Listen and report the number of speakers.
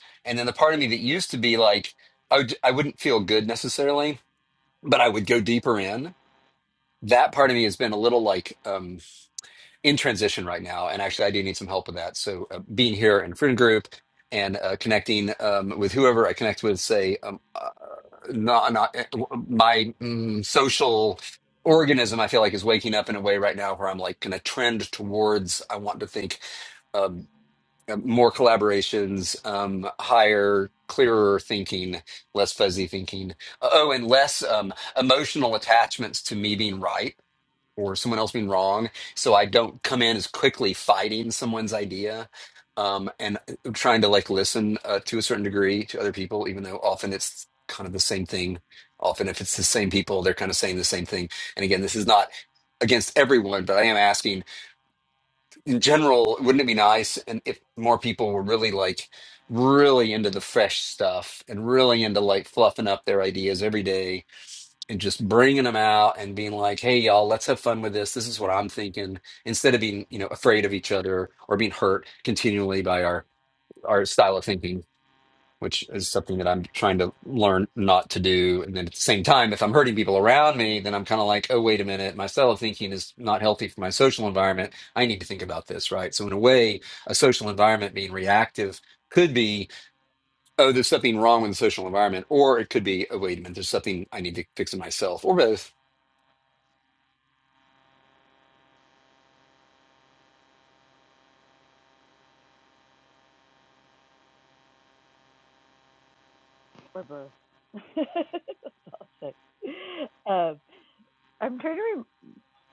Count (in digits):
2